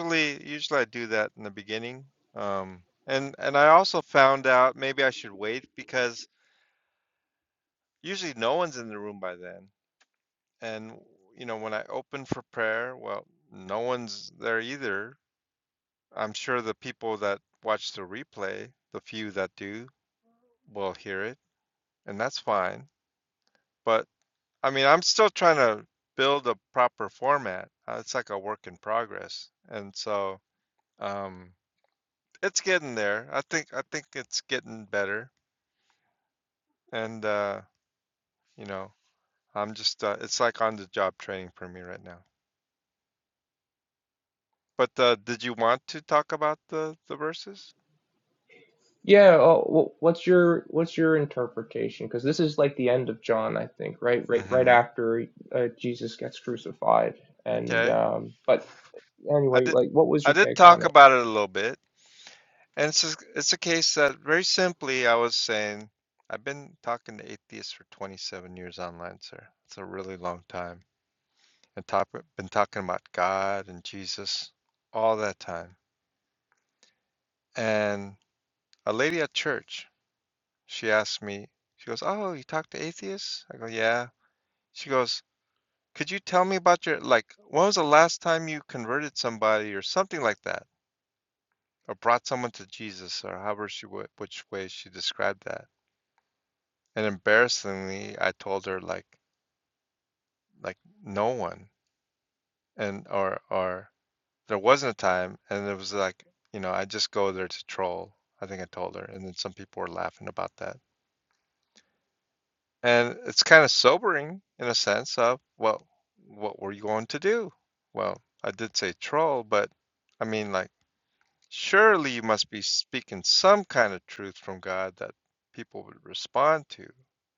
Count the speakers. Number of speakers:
2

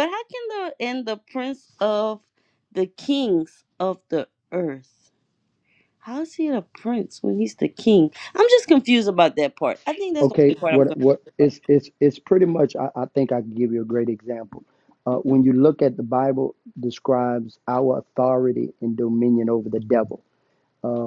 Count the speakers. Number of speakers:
2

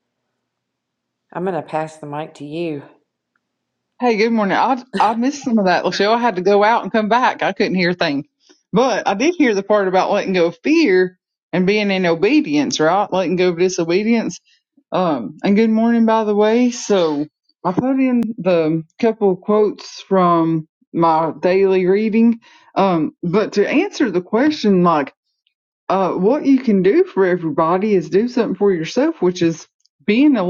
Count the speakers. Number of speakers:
2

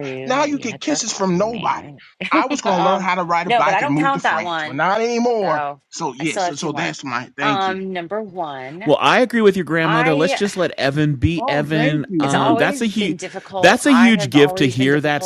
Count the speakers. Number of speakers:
3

